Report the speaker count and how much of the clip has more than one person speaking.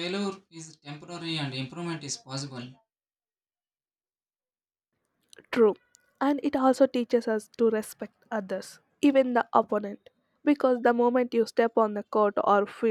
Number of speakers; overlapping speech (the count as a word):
two, no overlap